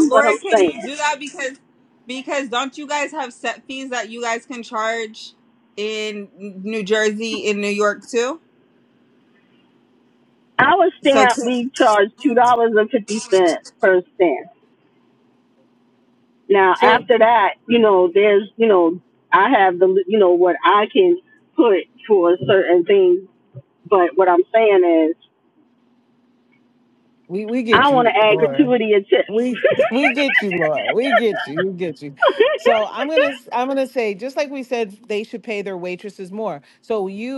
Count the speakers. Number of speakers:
3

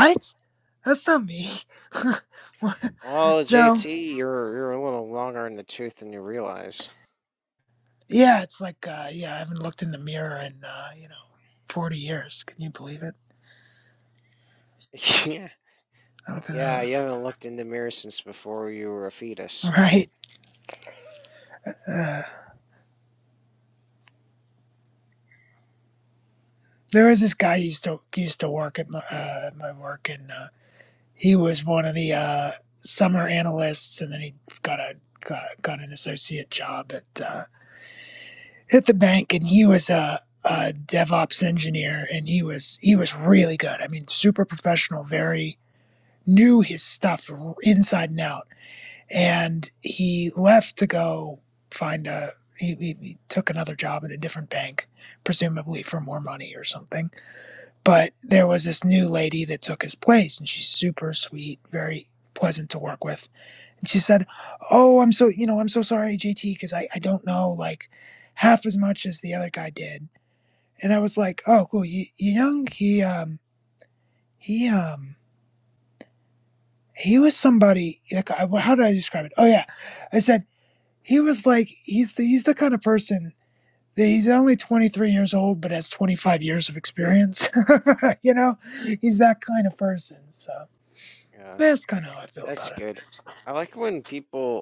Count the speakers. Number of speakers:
2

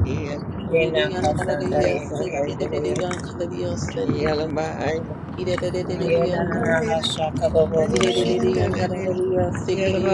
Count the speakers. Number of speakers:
3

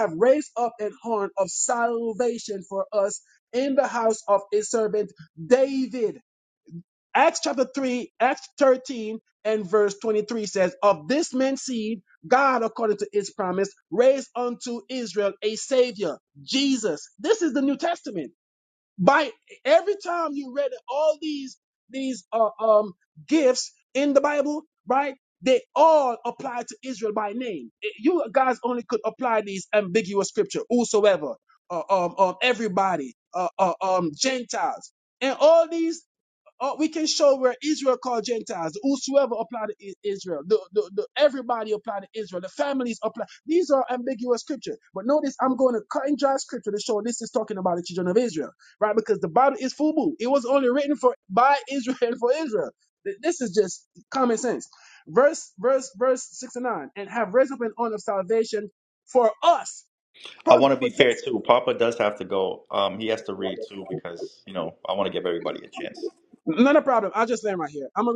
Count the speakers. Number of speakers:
2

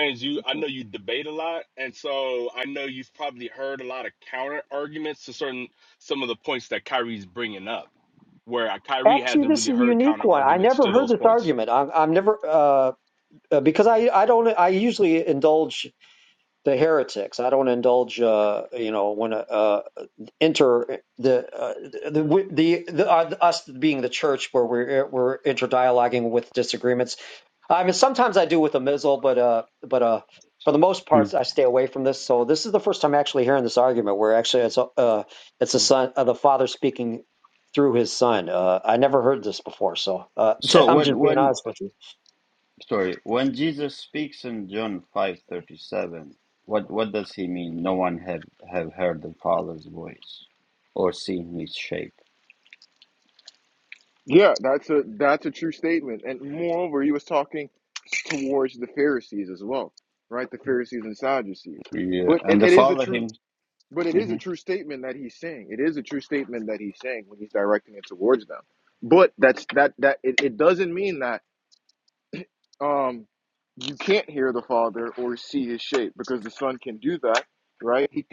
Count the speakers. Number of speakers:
4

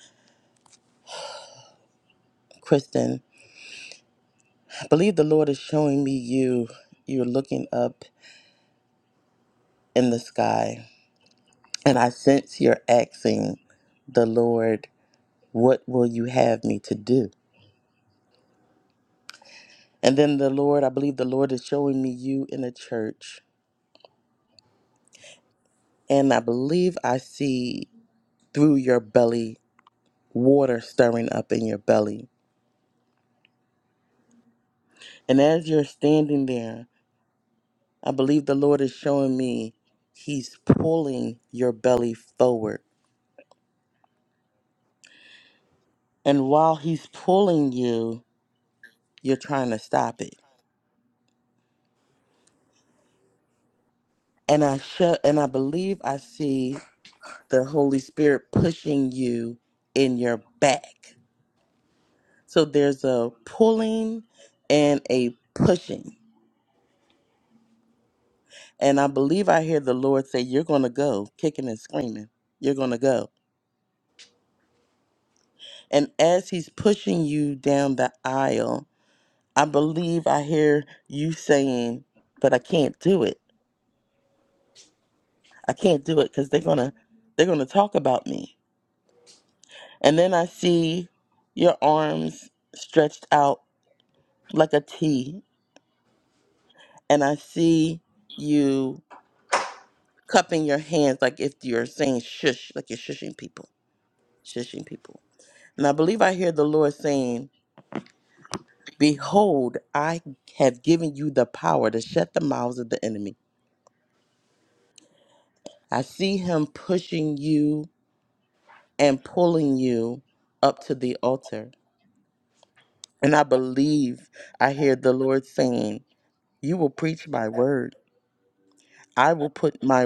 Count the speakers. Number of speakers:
1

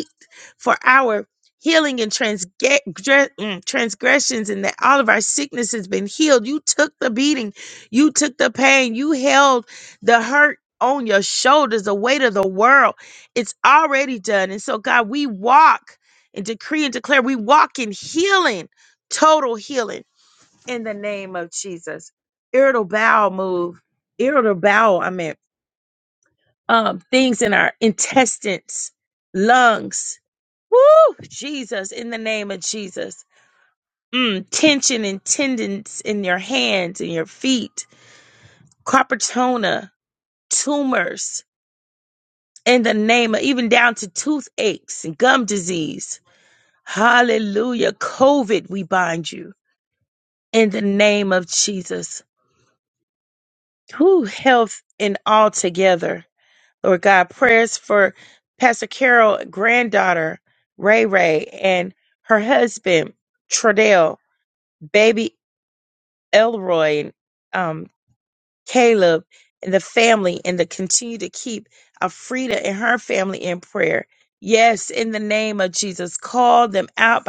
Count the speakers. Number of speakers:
1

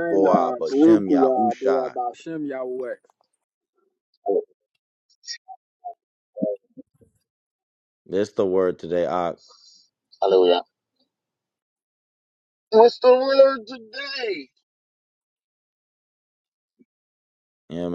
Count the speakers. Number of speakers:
3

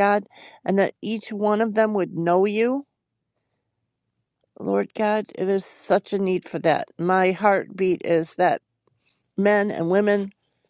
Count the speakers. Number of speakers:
1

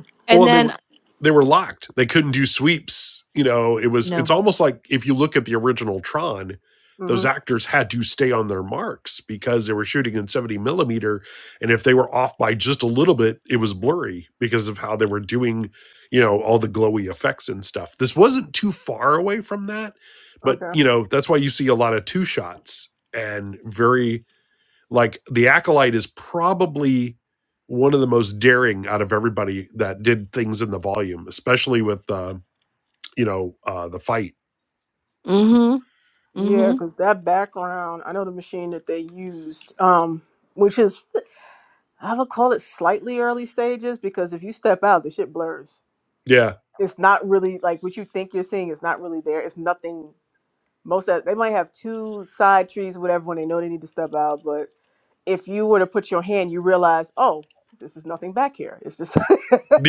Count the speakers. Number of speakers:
3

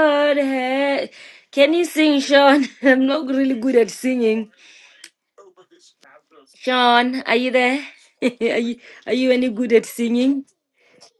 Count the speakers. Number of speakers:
1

